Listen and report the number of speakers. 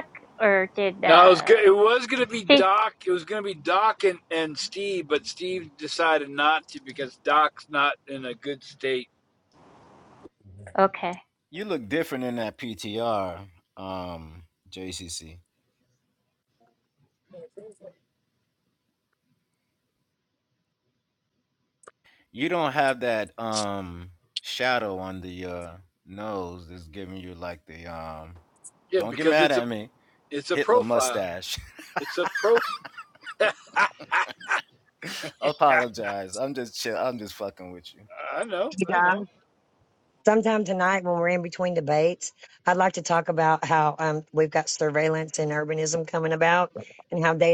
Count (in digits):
4